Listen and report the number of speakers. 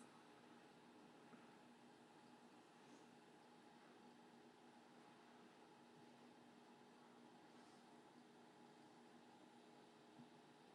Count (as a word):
zero